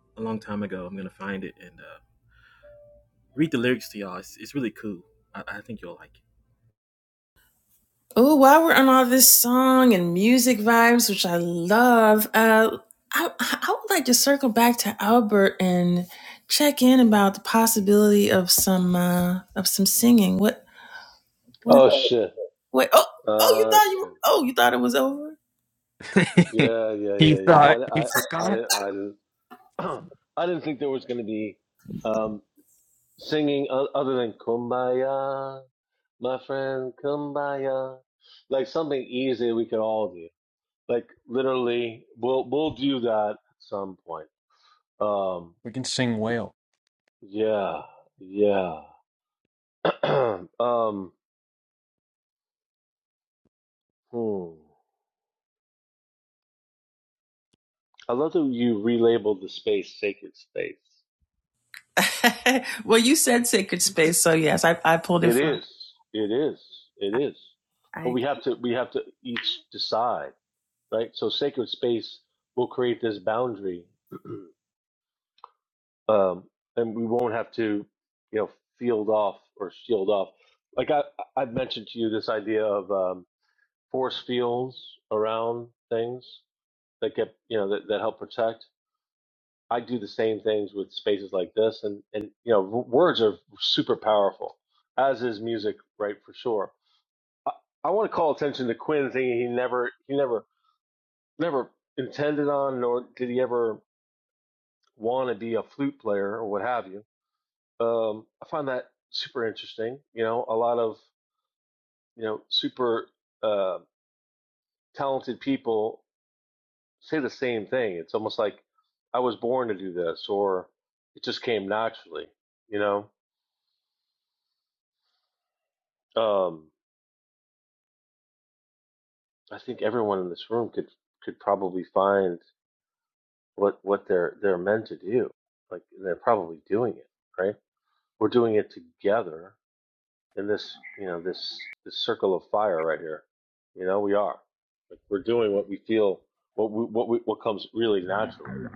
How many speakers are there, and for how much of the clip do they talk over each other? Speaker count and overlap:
four, about 2%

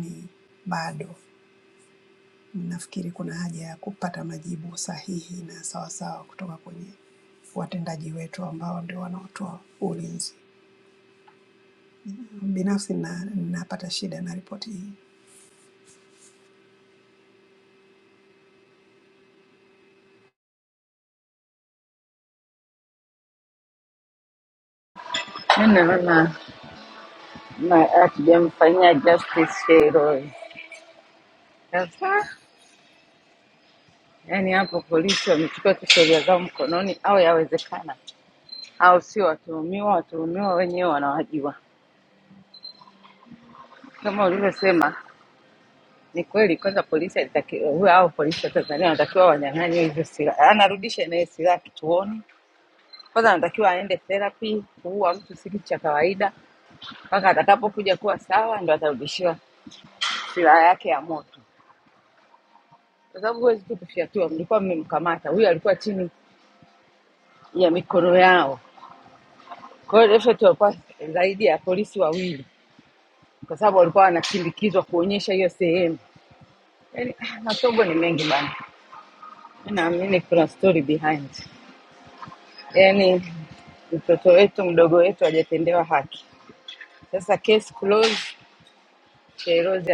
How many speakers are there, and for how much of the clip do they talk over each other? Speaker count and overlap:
two, no overlap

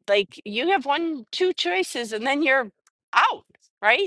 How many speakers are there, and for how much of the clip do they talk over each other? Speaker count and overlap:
one, no overlap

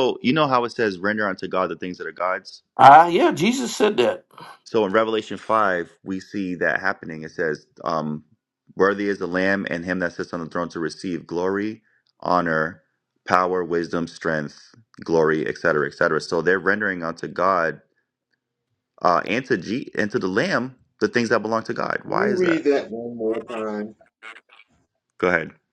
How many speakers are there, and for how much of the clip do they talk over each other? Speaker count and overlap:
three, about 2%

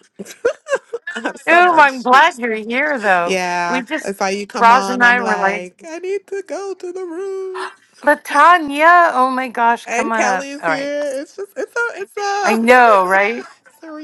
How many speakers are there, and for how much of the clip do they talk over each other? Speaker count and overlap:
two, about 26%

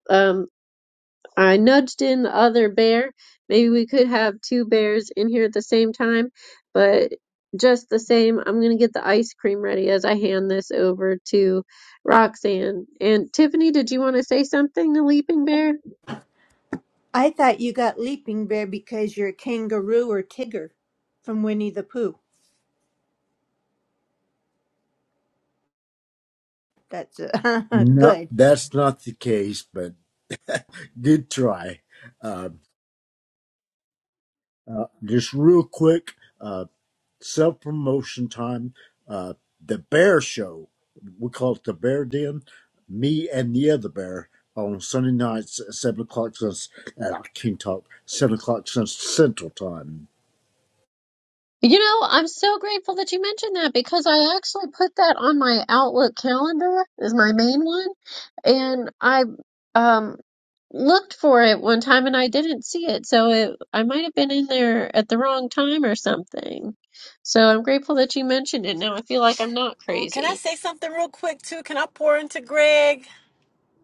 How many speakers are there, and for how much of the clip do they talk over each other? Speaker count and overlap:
four, about 1%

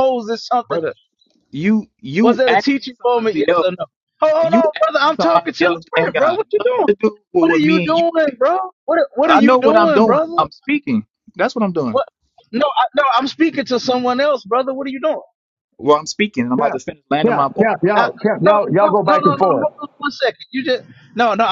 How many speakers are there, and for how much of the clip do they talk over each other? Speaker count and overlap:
three, about 33%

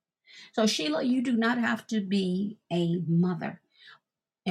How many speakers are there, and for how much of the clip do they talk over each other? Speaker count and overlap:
one, no overlap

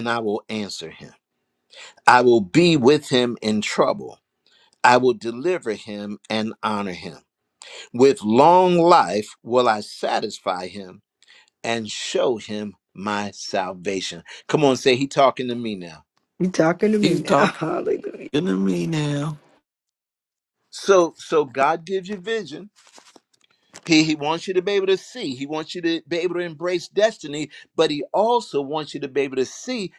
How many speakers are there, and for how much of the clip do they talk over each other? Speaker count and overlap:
three, about 2%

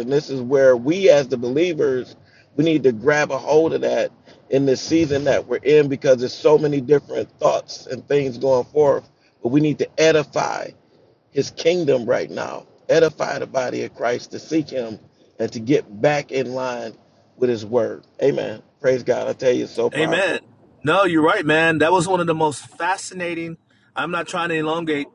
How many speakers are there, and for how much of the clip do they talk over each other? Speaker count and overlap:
two, about 2%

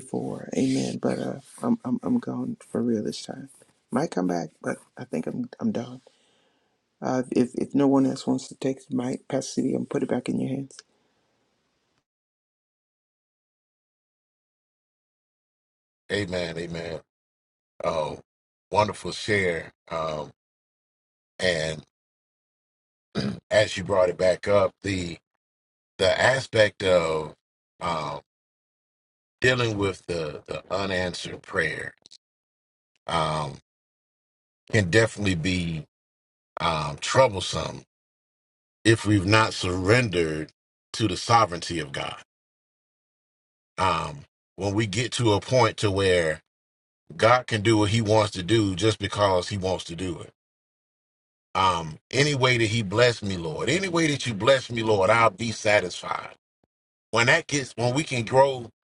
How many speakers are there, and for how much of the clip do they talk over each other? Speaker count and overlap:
two, no overlap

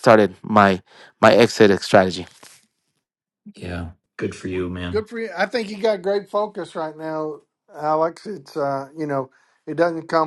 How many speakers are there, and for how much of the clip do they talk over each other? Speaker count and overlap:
three, under 1%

